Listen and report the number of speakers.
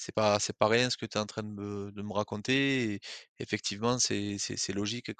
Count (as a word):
one